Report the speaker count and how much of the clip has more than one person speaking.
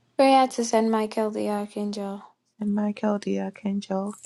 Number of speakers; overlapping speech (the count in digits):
2, no overlap